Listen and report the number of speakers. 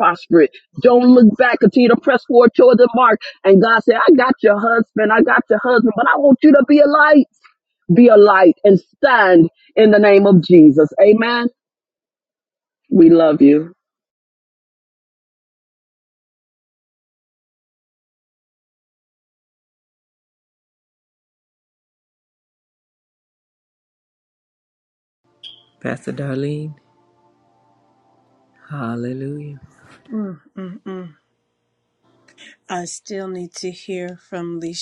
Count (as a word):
three